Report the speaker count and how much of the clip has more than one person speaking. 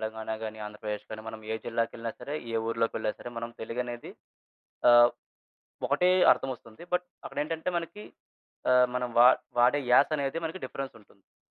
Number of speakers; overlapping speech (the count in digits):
1, no overlap